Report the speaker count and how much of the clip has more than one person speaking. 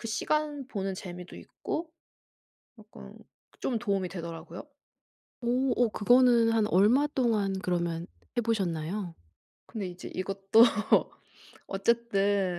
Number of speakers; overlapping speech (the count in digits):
2, no overlap